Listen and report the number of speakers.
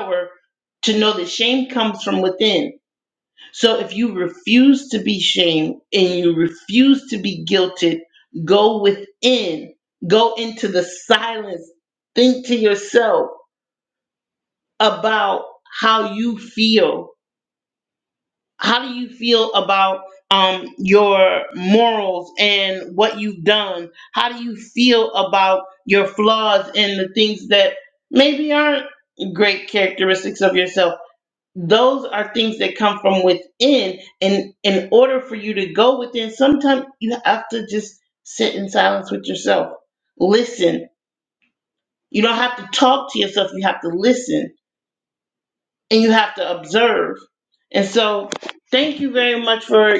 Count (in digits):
1